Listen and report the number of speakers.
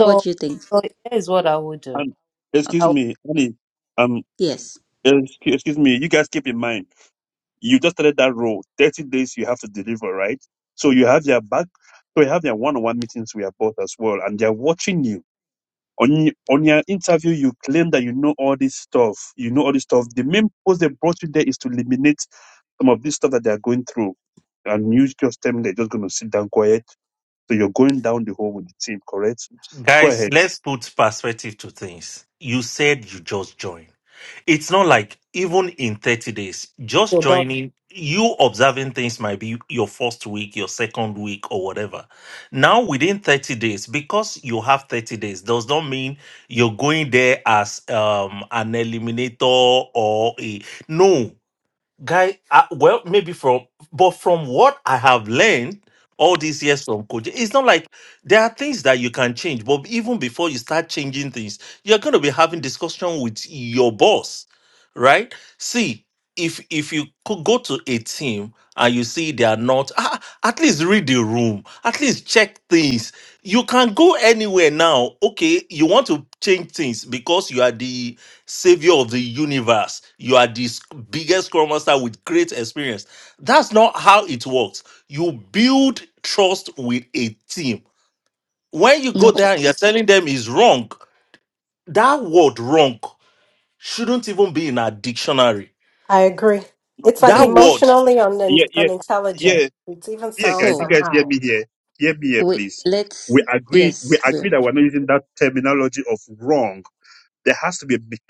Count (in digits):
5